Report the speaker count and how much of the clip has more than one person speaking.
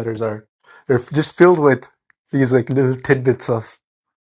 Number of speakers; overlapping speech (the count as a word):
one, no overlap